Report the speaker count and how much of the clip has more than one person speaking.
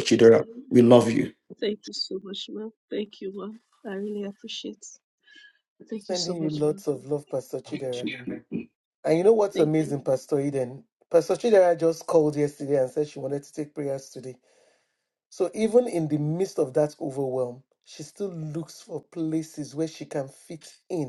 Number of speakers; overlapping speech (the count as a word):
three, about 9%